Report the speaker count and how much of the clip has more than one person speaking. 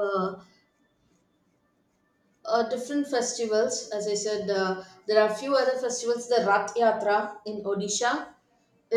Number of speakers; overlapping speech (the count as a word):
one, no overlap